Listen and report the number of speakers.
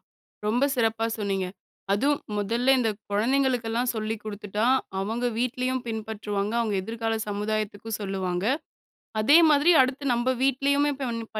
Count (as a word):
one